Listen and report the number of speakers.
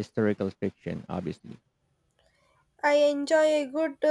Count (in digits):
2